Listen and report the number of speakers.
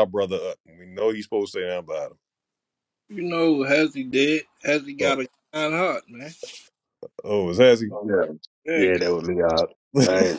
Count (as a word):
three